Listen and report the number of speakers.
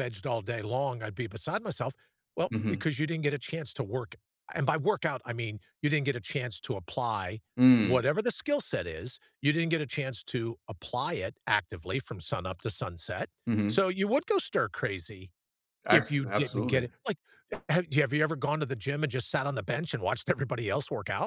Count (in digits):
2